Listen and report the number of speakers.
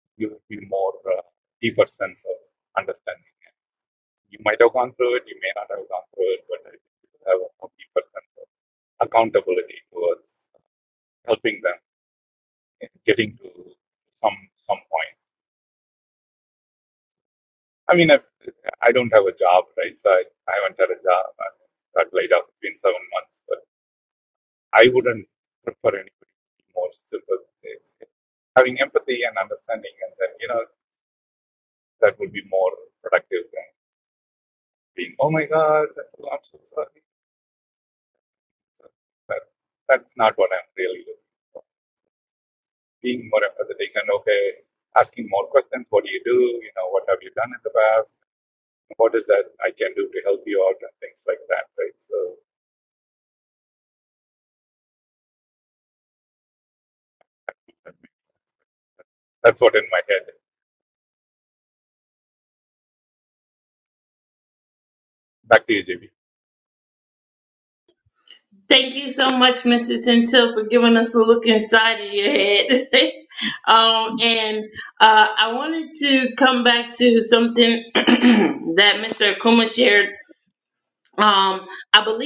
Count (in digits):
2